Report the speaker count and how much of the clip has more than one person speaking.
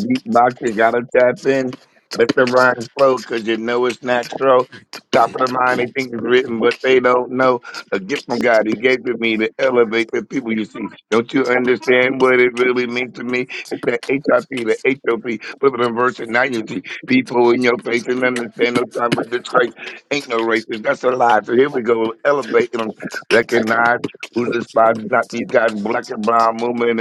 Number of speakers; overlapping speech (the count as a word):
one, no overlap